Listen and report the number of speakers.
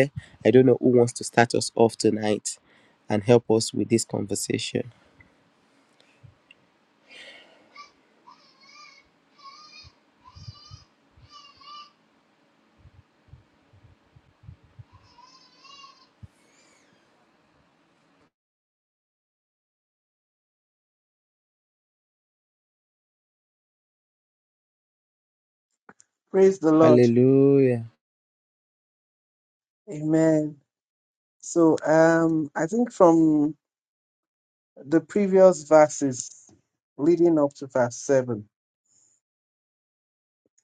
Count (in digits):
2